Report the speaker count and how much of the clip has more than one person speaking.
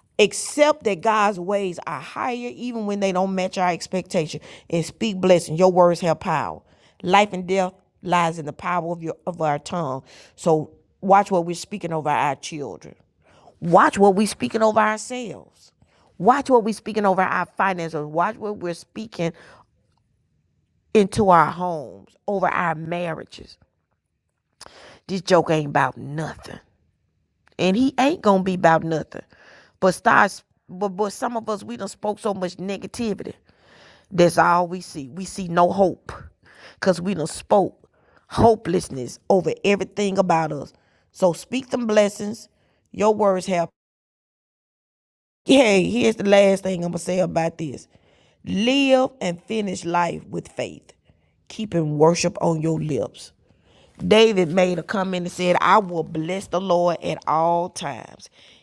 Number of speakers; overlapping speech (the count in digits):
1, no overlap